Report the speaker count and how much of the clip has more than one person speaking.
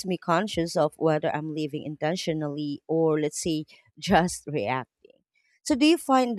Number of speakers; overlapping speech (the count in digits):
1, no overlap